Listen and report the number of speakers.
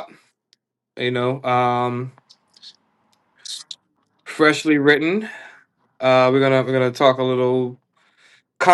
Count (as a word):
one